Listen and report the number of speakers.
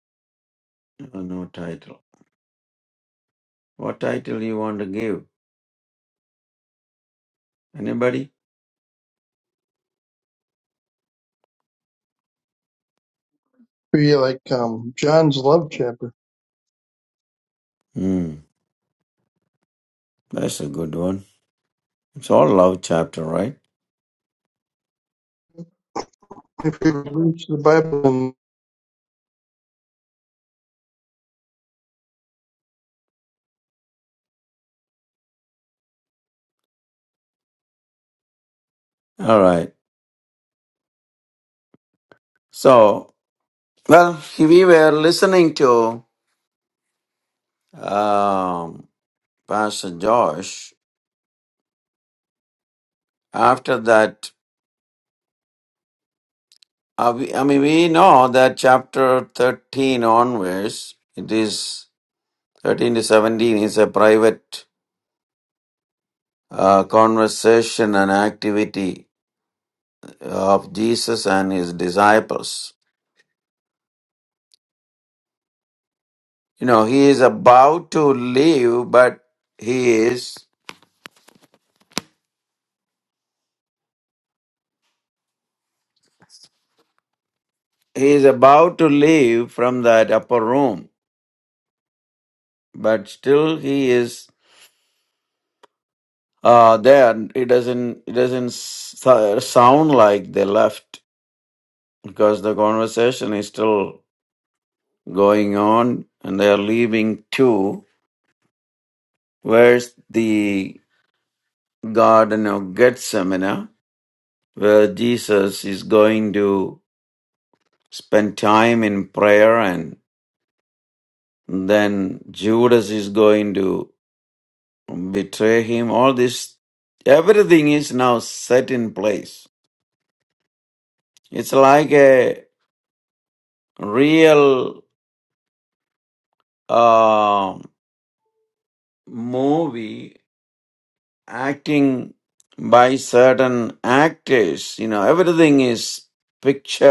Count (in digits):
2